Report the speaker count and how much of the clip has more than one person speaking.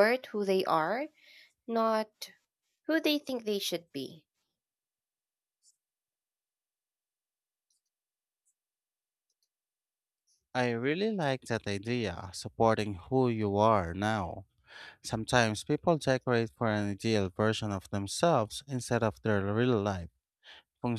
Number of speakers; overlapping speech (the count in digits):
2, no overlap